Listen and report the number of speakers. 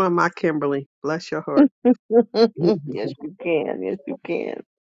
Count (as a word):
two